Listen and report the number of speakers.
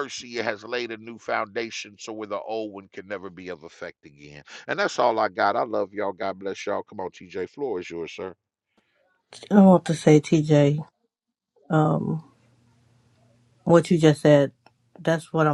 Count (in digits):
2